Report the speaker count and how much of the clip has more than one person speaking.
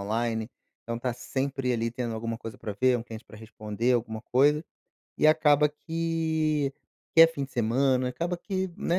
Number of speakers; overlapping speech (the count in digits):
1, no overlap